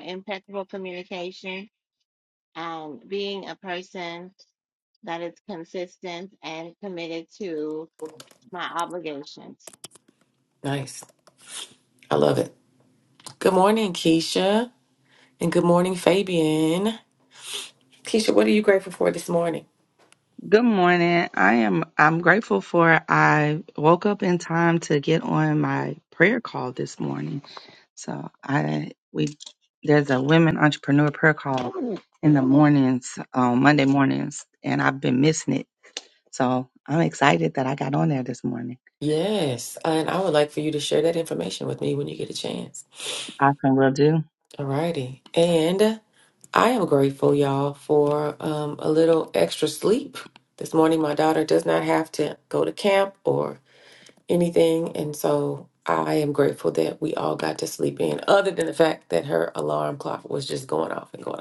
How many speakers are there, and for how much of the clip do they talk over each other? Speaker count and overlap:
three, no overlap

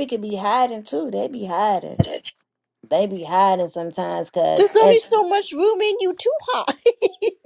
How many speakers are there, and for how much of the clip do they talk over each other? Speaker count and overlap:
two, about 1%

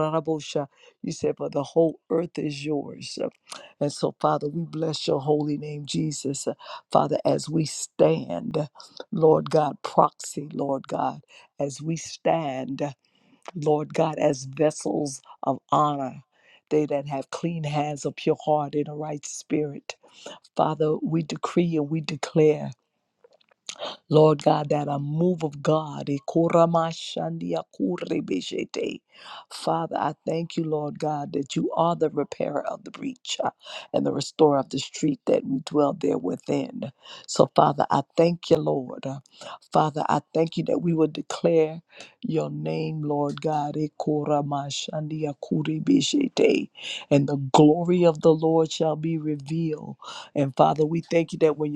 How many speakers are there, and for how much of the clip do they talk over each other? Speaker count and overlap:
one, no overlap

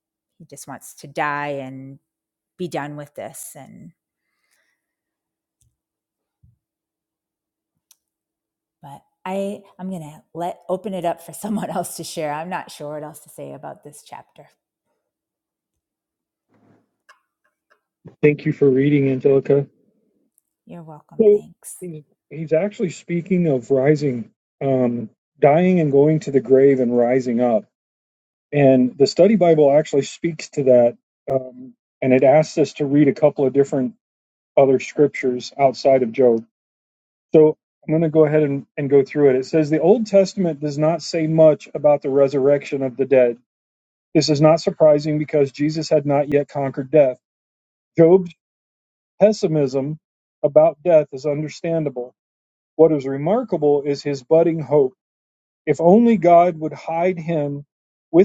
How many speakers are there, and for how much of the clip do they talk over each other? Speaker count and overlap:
two, under 1%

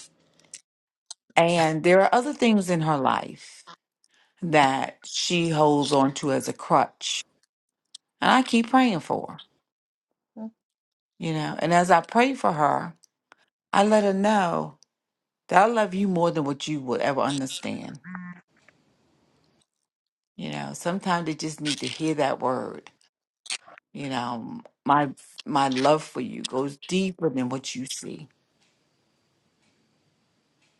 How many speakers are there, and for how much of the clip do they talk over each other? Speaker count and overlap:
one, no overlap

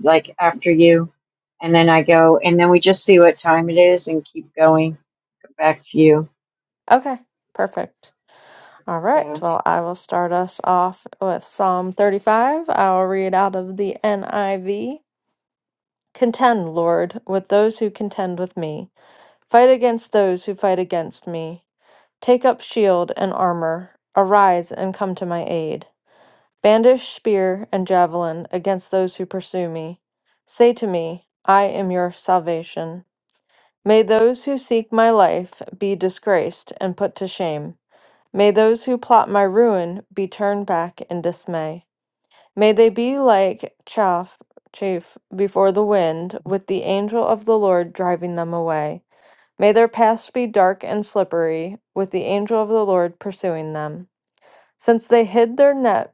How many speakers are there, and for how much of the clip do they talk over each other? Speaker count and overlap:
two, under 1%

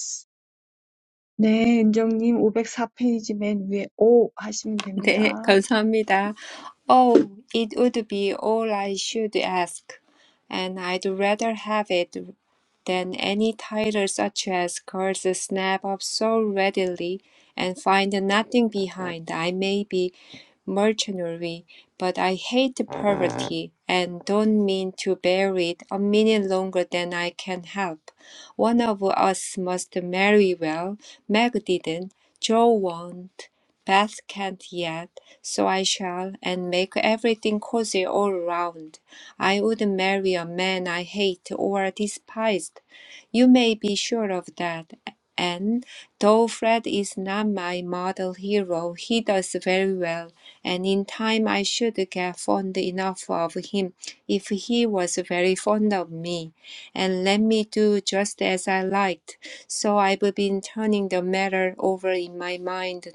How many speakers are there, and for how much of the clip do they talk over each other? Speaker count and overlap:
two, about 1%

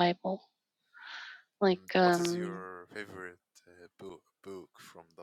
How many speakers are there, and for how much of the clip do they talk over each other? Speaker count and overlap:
two, about 16%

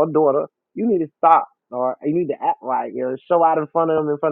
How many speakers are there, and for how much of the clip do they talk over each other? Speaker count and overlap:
one, no overlap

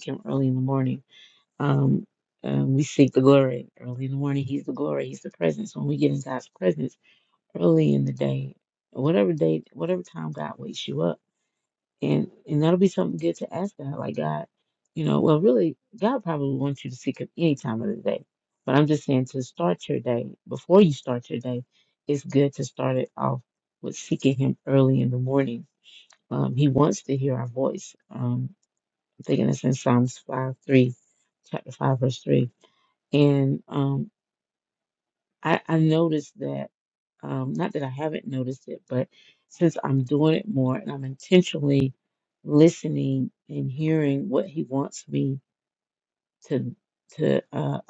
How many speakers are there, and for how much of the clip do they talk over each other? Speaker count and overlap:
one, no overlap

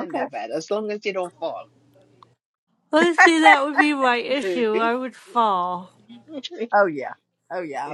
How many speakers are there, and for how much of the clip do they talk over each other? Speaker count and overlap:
three, about 5%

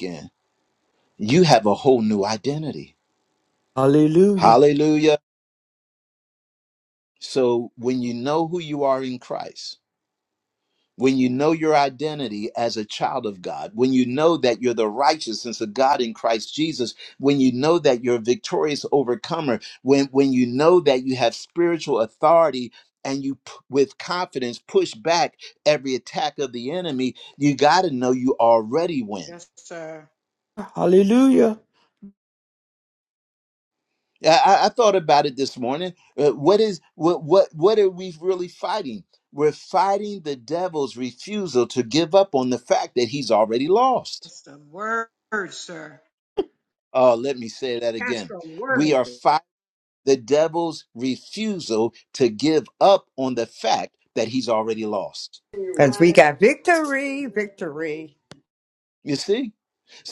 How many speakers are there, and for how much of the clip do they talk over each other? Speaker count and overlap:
four, about 1%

